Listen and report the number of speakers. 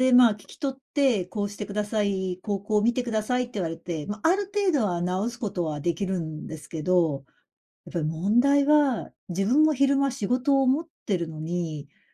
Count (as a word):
one